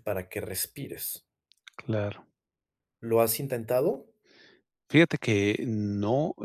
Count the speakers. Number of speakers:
2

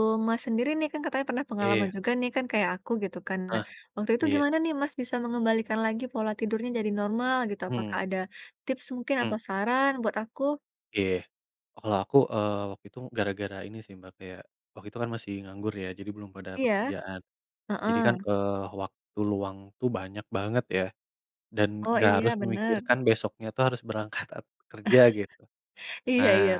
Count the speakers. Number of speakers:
2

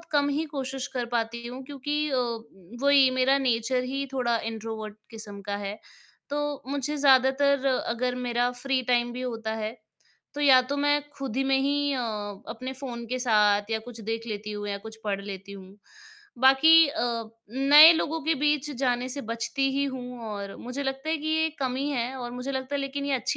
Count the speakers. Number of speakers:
1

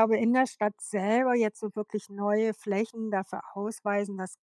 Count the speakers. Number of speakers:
1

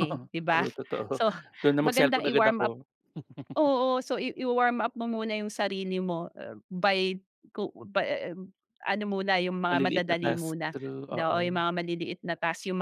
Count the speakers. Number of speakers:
2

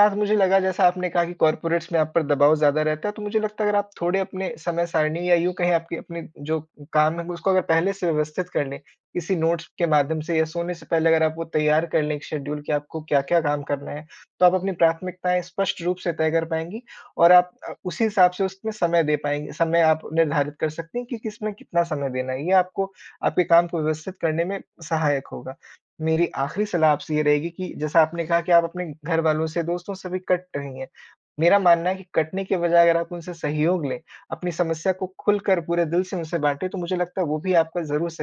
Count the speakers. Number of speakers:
1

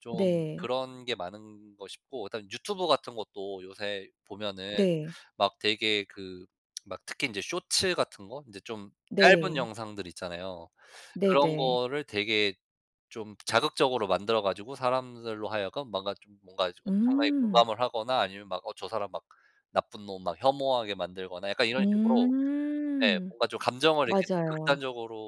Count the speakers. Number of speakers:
2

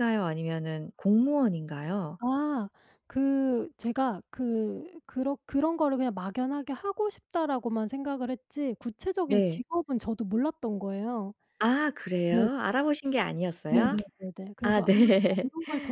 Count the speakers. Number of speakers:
2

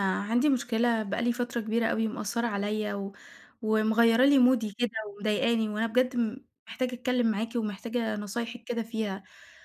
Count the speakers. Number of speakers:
1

